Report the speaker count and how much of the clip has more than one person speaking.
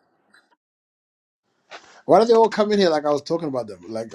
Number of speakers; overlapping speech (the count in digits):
1, no overlap